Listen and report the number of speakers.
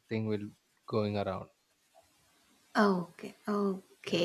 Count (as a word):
two